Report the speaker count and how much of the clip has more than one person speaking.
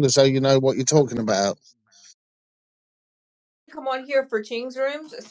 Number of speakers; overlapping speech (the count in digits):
2, no overlap